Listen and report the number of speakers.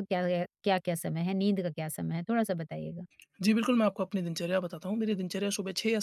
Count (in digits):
2